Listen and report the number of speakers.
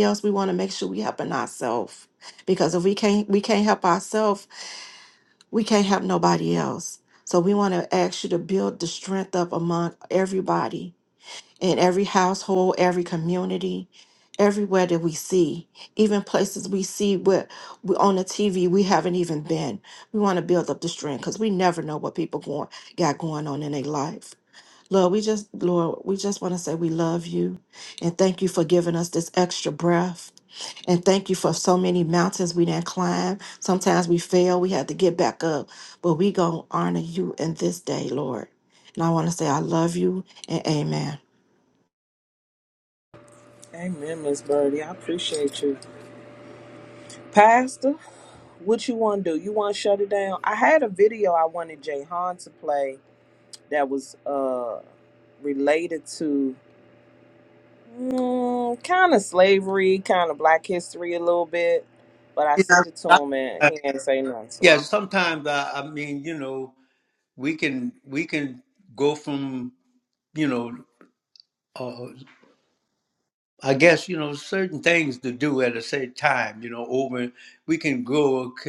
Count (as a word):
three